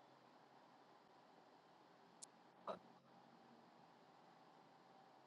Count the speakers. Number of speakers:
0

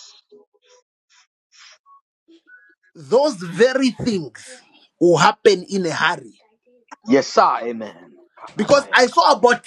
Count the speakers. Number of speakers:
2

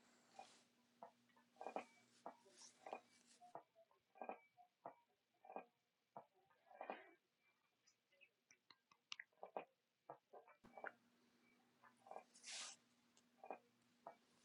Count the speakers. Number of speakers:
0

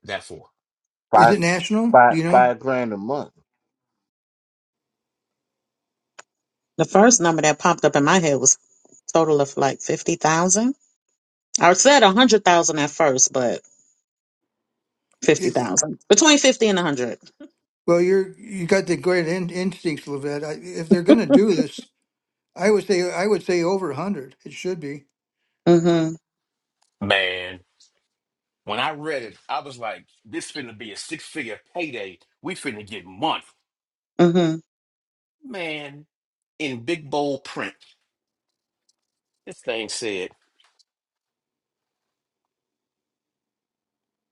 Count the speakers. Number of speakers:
4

